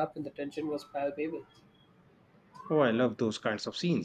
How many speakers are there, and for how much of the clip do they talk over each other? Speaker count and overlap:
2, no overlap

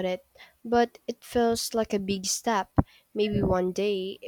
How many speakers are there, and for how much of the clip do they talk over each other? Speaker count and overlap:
1, no overlap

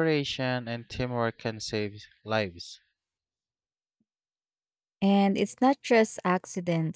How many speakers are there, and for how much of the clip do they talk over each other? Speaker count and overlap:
2, no overlap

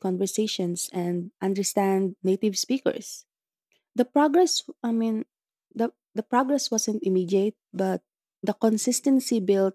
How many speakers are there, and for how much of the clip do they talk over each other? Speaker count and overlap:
1, no overlap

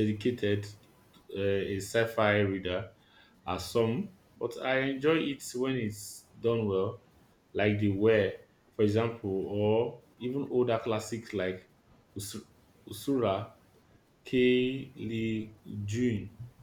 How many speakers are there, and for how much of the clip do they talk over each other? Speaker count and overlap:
1, no overlap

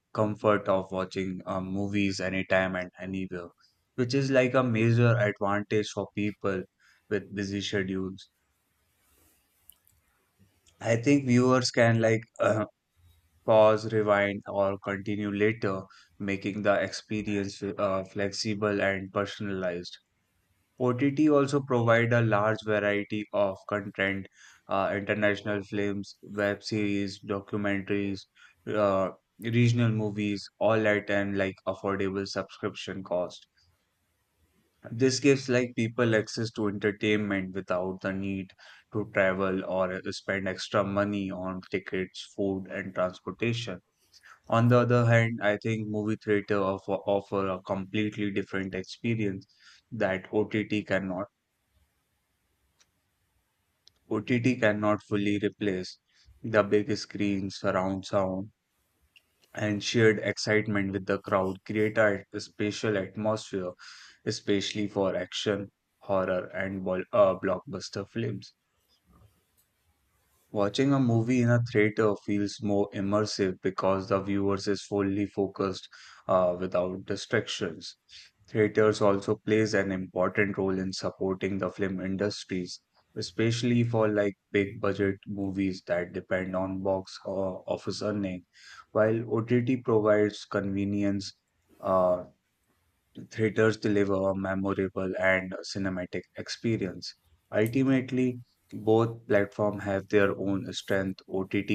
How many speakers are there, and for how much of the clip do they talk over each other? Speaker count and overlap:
1, no overlap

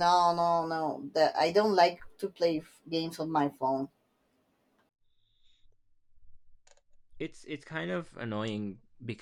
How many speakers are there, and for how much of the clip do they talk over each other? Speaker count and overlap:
2, no overlap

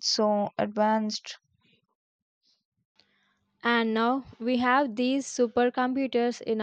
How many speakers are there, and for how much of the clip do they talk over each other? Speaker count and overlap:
2, no overlap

